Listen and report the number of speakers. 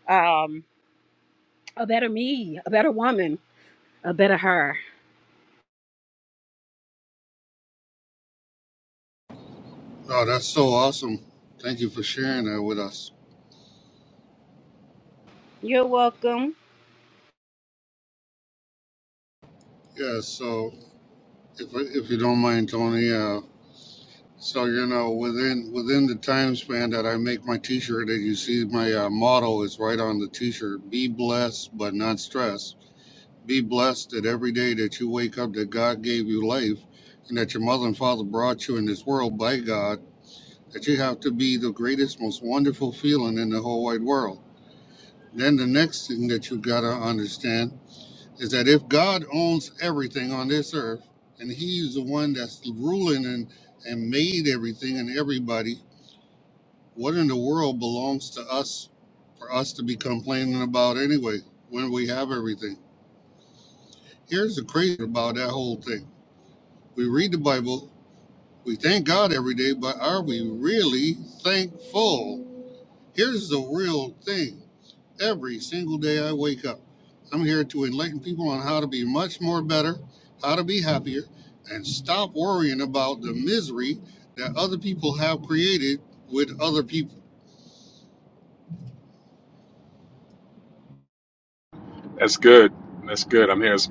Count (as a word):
three